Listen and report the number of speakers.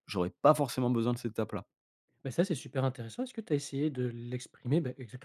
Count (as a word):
two